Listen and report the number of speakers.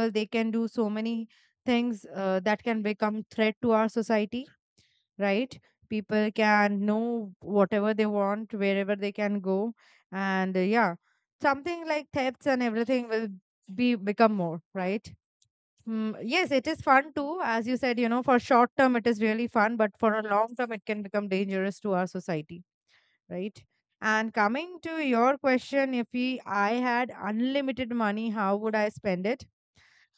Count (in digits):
1